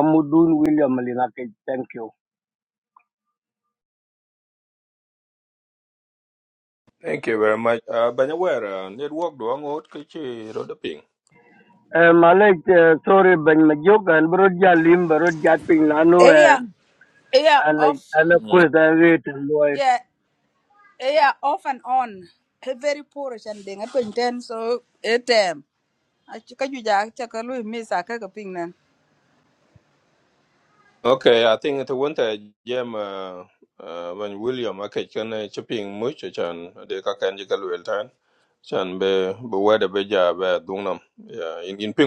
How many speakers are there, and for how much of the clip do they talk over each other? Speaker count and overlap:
3, about 2%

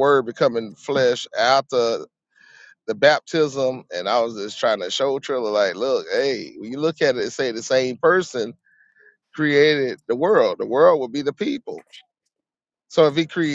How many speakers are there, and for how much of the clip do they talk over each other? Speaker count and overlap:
1, no overlap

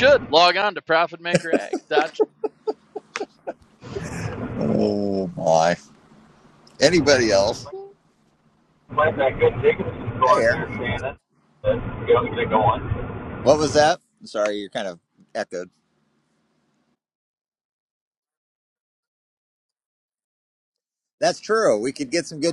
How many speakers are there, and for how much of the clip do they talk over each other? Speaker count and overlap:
3, about 2%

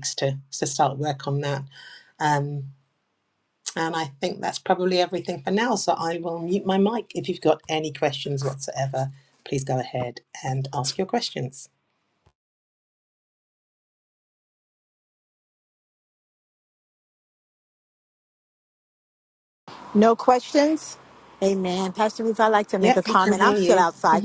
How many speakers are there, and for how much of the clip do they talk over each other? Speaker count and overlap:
2, about 6%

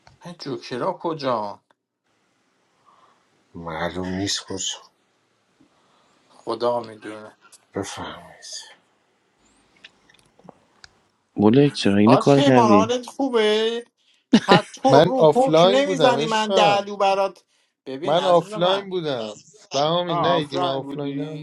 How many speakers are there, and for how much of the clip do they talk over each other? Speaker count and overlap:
4, about 23%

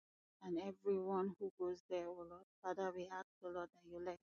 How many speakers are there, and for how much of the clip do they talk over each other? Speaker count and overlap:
1, no overlap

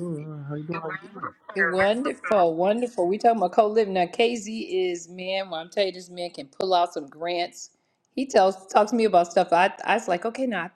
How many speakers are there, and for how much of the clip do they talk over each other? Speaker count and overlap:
2, no overlap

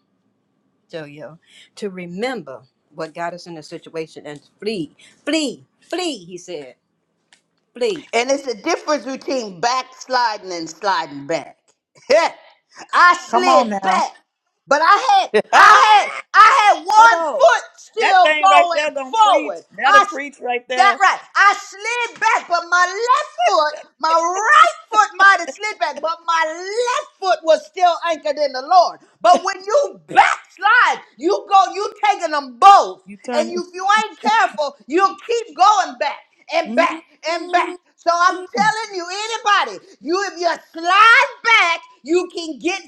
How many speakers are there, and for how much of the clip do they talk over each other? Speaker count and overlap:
3, about 10%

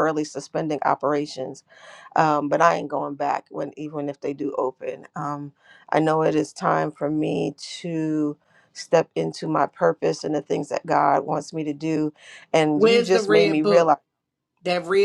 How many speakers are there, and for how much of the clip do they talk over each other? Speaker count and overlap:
2, about 8%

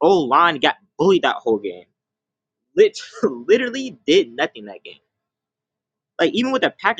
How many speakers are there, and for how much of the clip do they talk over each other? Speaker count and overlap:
1, no overlap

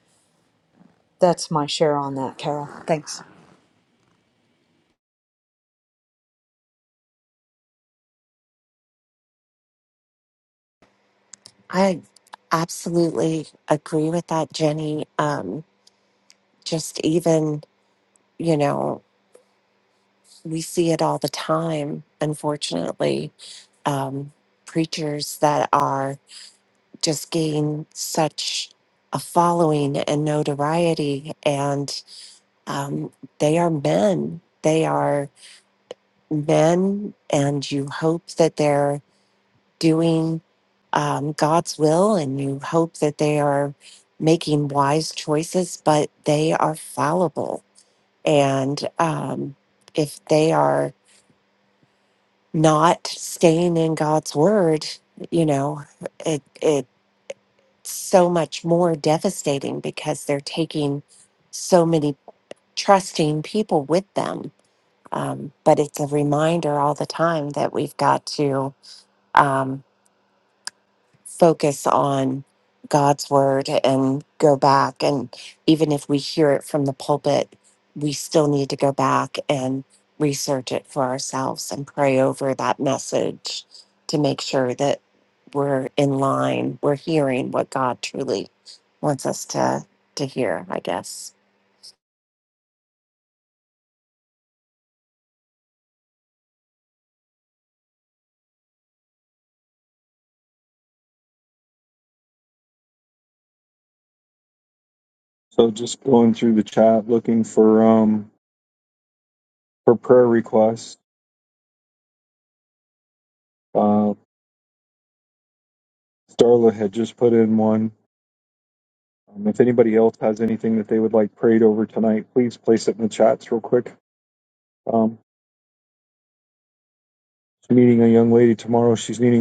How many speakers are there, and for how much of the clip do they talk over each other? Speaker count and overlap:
3, no overlap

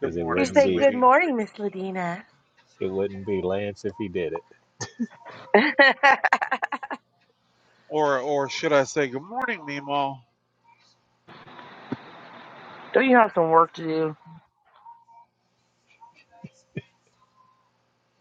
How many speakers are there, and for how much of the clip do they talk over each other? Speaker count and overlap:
3, about 5%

